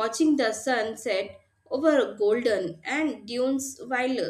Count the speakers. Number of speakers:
1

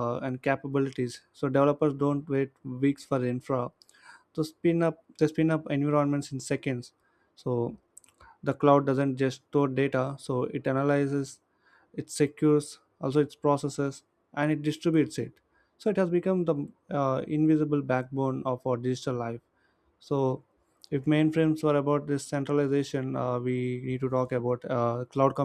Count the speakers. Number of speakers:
1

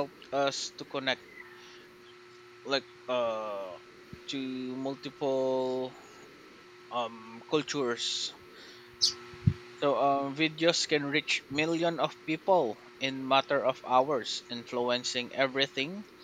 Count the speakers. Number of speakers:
1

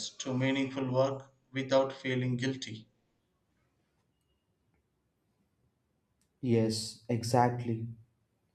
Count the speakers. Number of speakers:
2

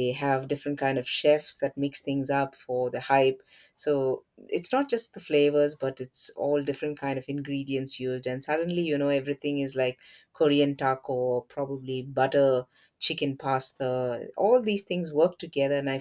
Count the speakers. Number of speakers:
1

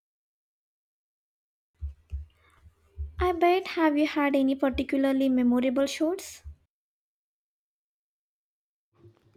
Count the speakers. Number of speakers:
1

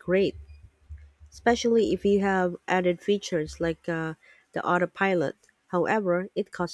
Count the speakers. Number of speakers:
1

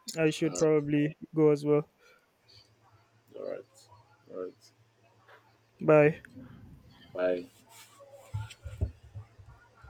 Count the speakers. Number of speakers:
2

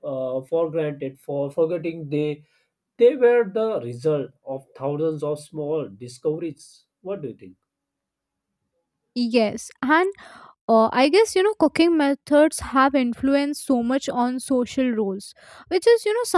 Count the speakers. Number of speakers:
2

